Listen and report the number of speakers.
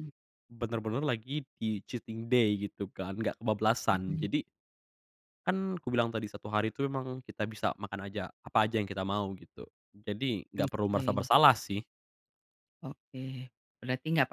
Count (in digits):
2